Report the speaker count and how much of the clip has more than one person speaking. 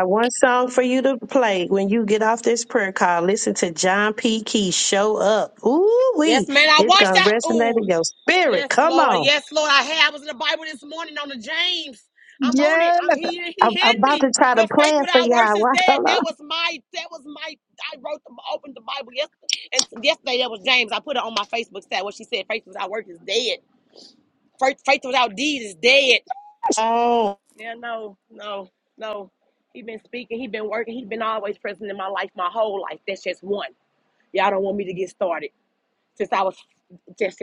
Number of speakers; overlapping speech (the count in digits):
2, about 15%